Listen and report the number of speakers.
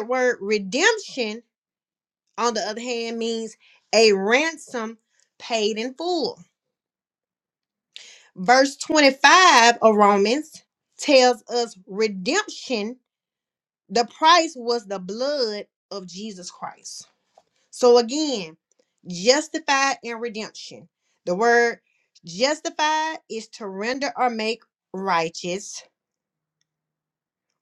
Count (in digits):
1